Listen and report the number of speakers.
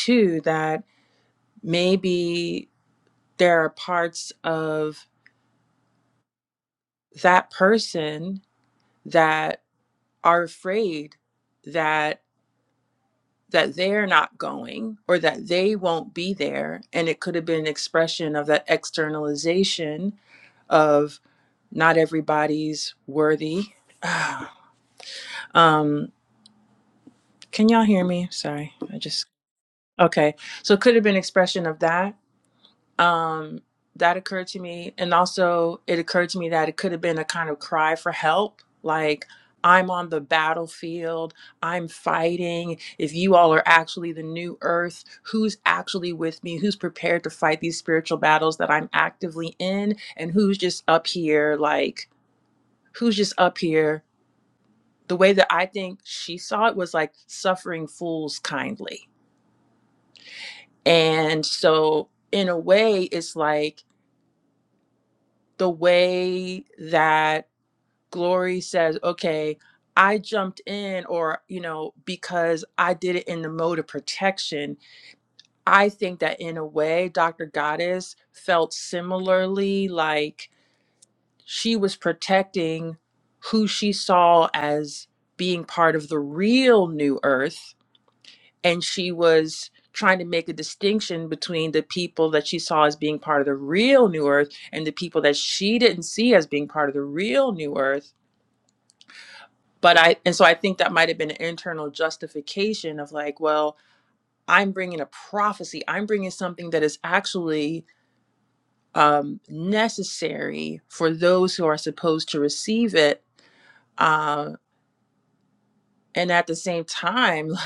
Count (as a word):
one